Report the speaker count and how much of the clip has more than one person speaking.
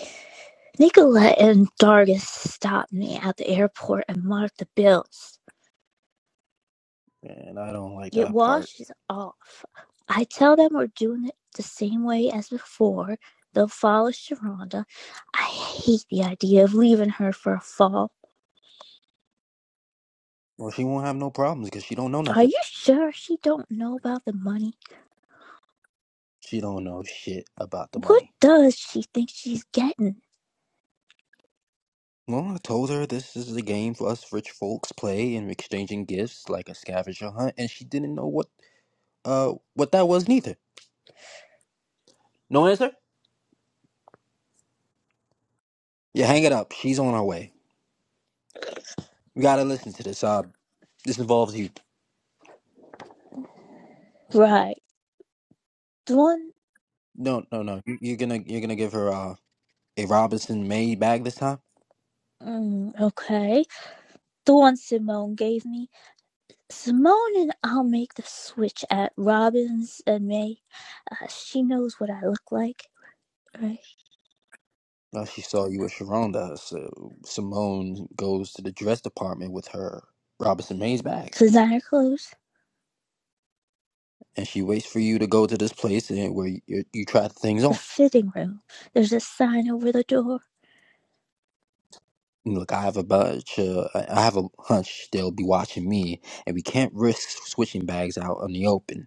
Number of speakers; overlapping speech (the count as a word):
two, about 1%